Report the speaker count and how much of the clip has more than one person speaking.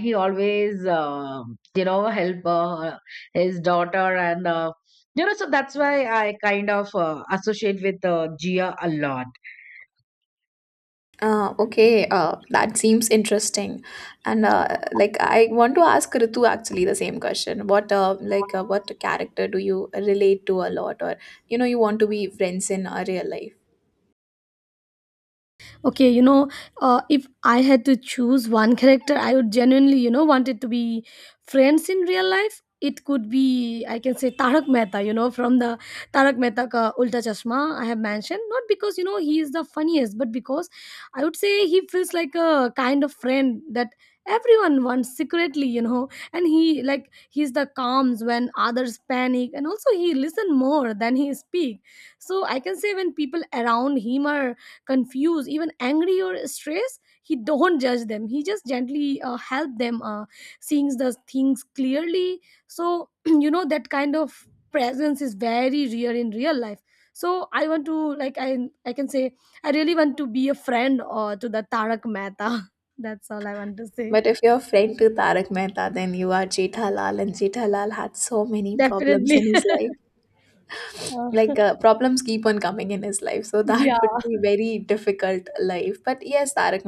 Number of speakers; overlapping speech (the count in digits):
3, about 2%